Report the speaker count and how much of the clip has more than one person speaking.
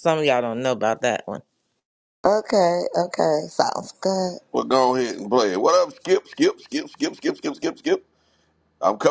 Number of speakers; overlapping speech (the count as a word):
three, no overlap